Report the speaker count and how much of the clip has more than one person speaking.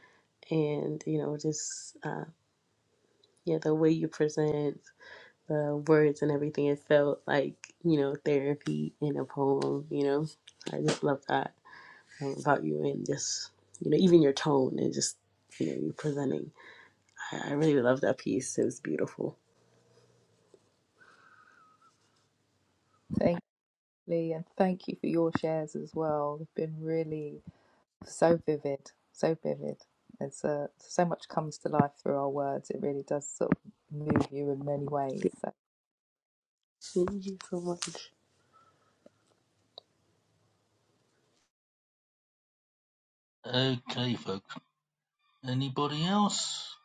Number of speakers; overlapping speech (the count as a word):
three, under 1%